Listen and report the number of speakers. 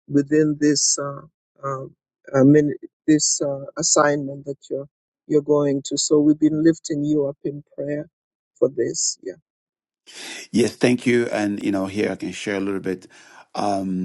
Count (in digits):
2